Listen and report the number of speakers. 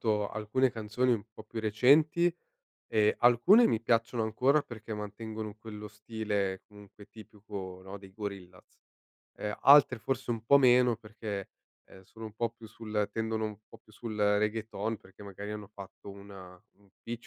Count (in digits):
1